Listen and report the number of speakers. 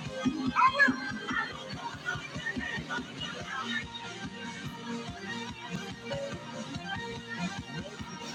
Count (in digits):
0